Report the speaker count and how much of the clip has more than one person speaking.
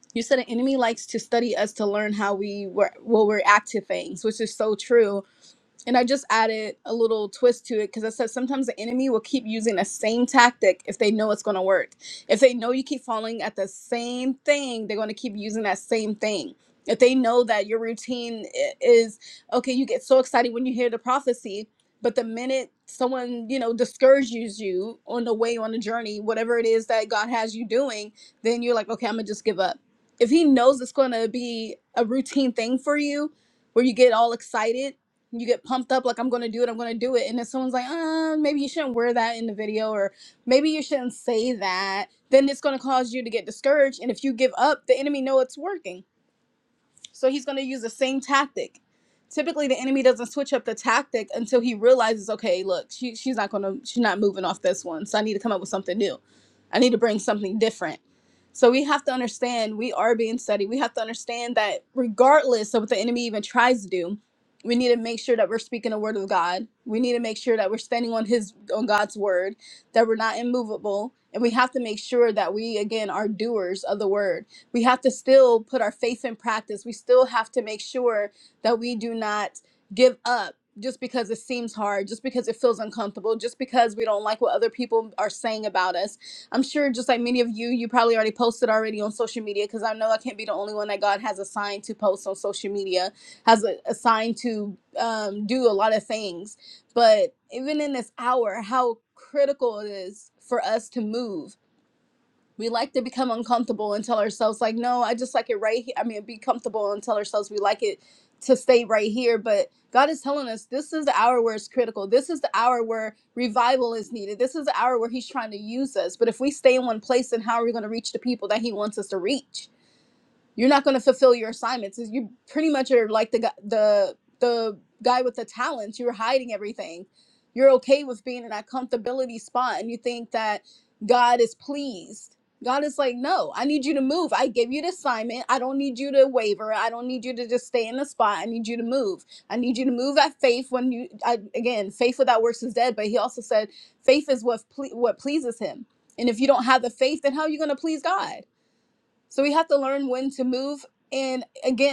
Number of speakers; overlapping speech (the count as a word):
one, no overlap